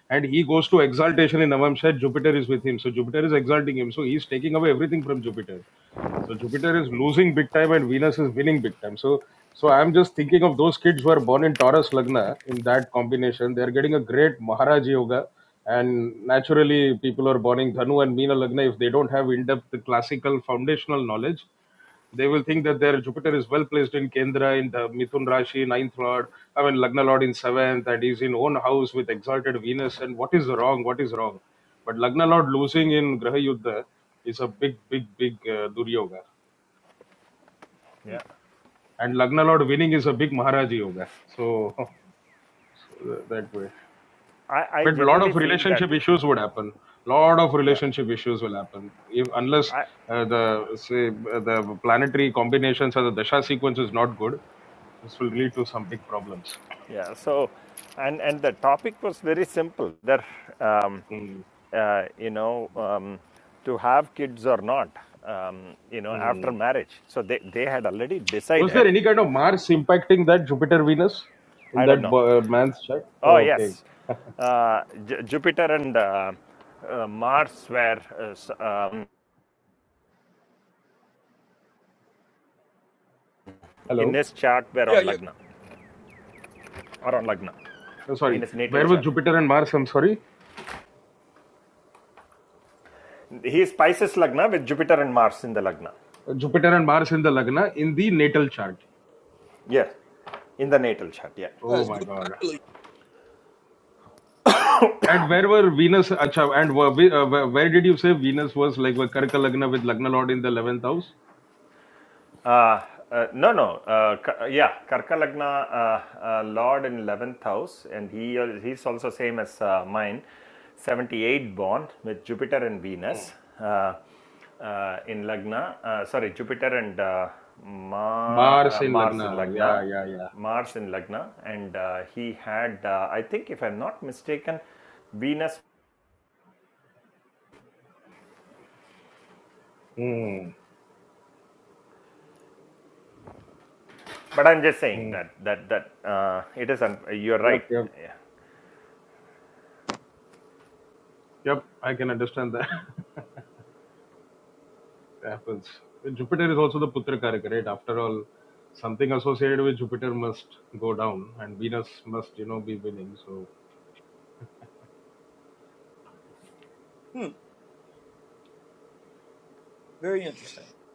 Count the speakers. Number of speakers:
3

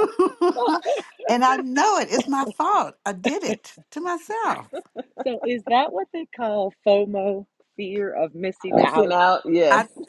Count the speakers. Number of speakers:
3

